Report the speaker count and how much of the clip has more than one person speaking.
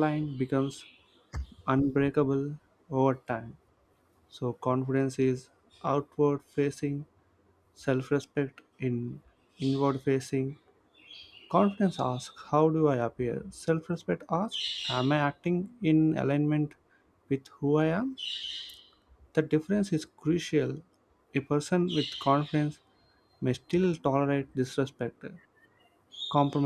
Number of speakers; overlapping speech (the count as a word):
one, no overlap